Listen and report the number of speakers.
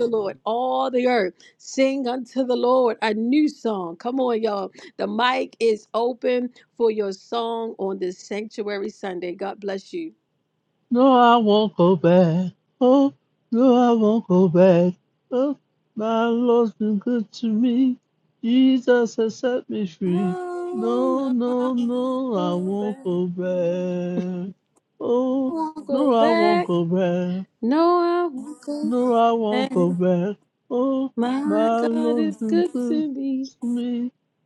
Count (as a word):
two